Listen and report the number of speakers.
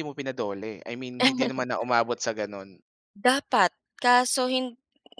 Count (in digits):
2